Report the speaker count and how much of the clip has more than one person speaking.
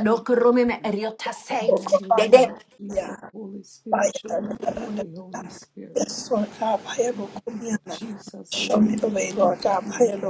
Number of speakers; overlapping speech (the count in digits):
3, about 53%